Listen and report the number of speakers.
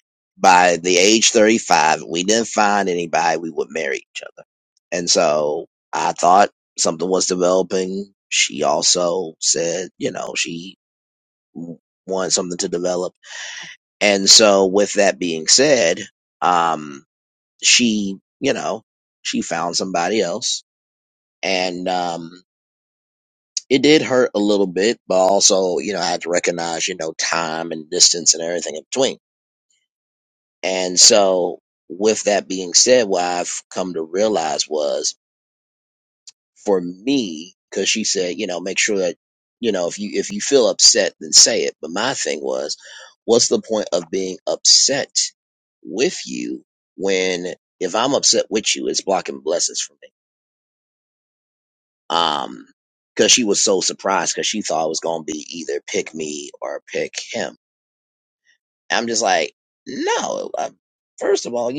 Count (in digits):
1